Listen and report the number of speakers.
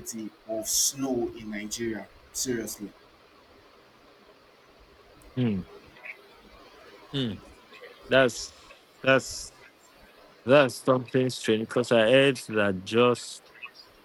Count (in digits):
2